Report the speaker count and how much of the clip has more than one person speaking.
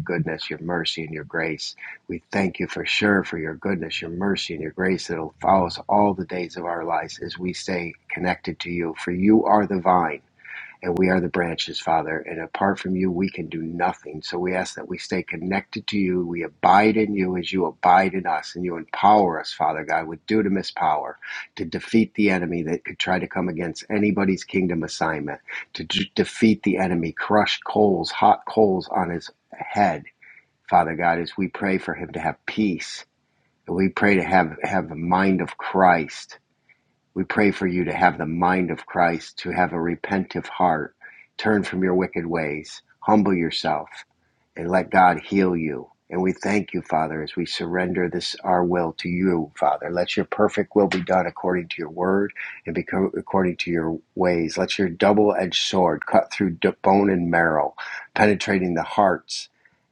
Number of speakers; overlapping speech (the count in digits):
1, no overlap